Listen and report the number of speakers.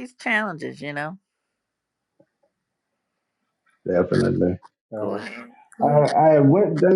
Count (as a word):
two